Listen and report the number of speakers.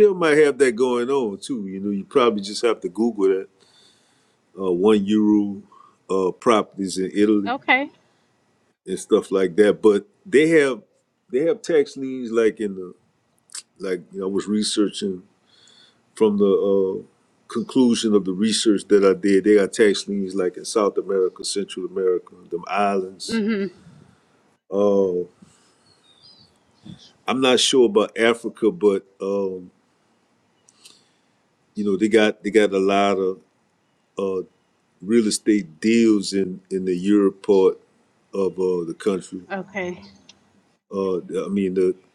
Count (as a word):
two